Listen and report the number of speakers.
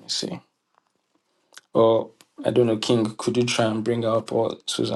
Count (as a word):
one